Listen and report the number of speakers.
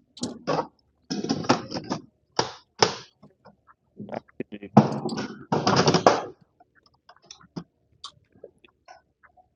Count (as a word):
zero